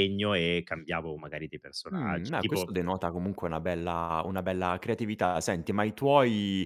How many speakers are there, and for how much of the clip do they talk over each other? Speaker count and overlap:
2, about 11%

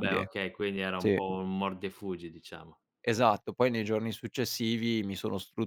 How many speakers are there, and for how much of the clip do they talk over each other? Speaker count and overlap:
2, about 7%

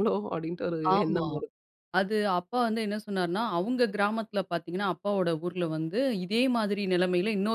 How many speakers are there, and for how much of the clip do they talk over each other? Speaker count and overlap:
2, about 5%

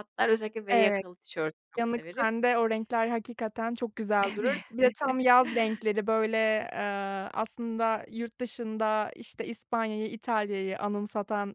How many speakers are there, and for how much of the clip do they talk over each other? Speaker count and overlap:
2, about 11%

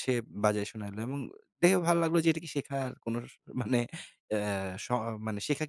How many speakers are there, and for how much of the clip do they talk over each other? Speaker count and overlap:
1, no overlap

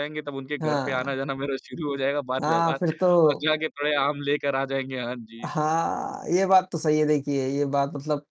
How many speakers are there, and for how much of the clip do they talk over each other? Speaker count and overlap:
2, about 13%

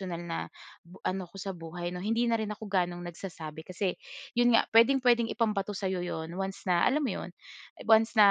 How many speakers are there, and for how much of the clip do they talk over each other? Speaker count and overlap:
1, no overlap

